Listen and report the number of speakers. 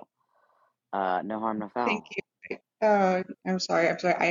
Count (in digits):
2